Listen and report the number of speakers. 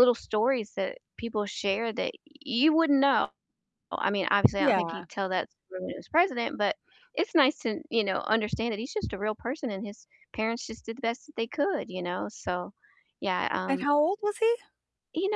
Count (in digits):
2